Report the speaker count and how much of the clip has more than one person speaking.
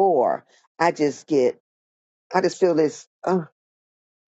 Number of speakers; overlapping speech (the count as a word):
one, no overlap